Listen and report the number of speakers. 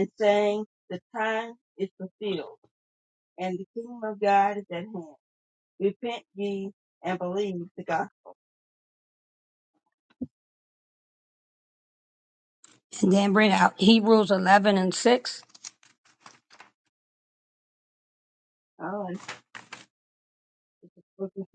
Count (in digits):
2